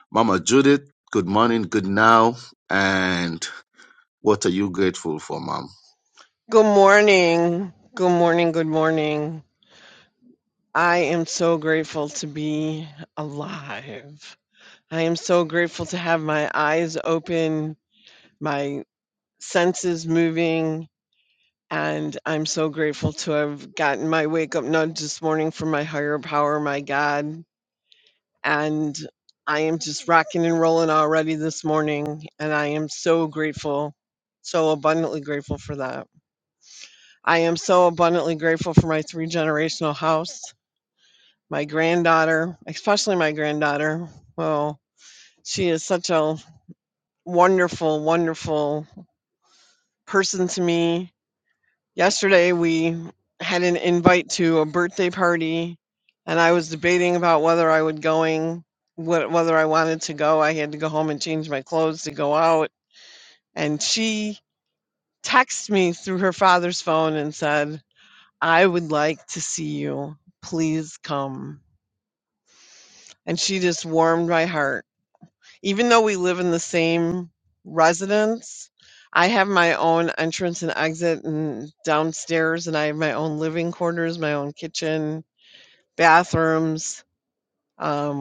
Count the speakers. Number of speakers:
2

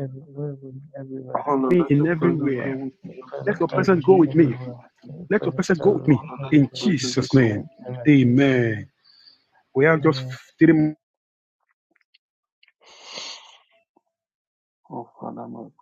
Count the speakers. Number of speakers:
3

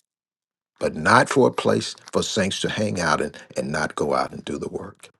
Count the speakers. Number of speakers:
1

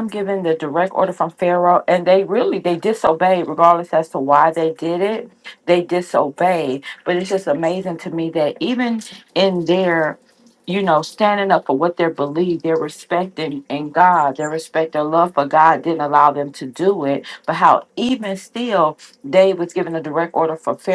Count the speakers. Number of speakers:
1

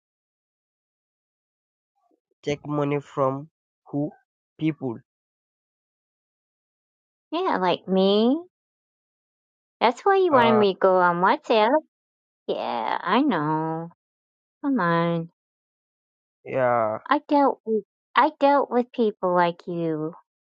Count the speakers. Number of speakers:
2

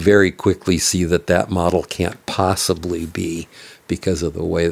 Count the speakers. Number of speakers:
1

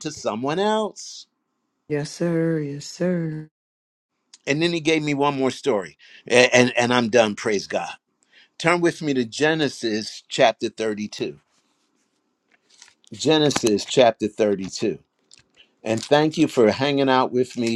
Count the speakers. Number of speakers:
2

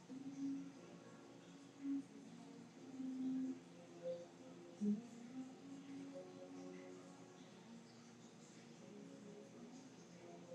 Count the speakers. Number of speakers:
0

